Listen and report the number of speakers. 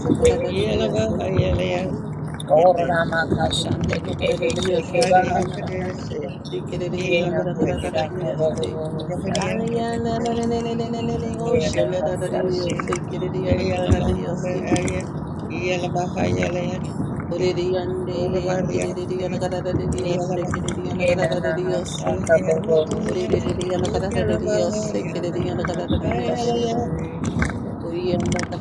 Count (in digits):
3